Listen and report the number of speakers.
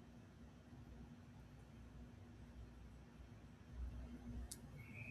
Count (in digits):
0